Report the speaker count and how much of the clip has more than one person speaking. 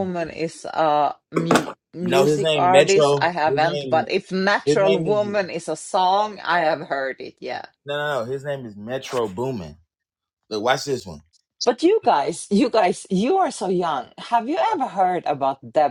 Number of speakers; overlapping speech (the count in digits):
2, about 17%